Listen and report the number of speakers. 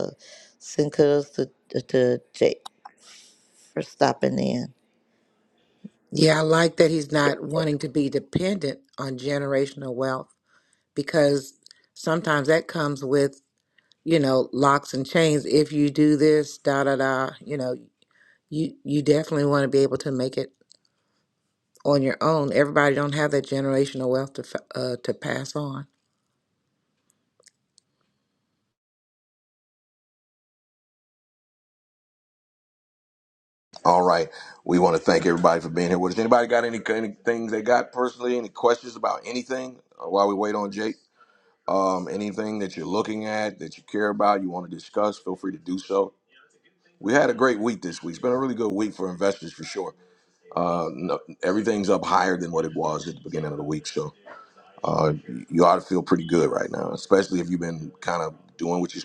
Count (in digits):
3